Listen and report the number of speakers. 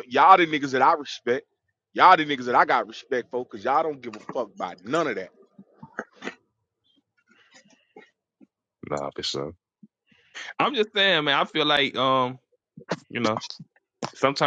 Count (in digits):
2